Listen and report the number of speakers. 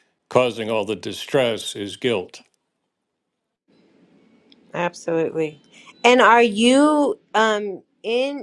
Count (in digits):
2